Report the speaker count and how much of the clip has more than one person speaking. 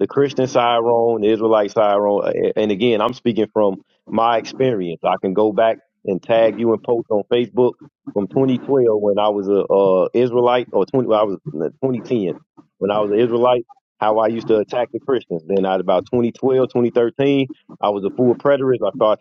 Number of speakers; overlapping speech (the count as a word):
one, no overlap